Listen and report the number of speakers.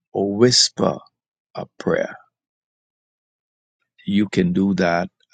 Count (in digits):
1